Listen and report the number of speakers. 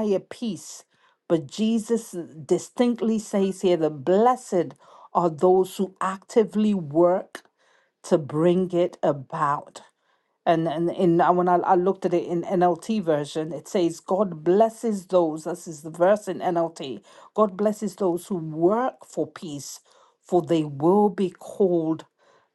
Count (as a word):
one